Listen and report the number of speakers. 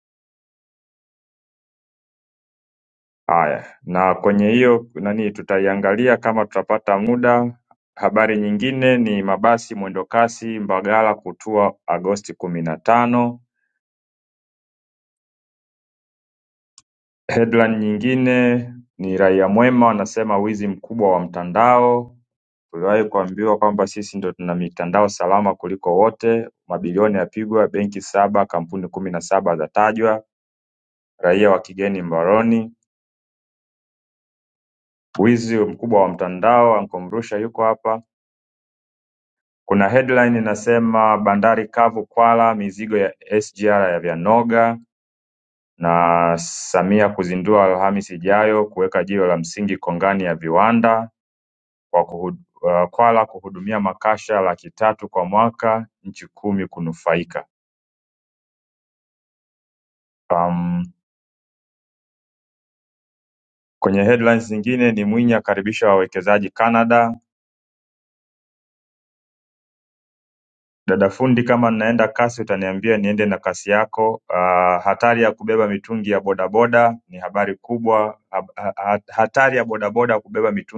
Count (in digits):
1